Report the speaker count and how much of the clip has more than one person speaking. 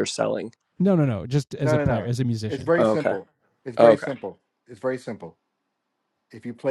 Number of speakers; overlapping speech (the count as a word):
three, about 21%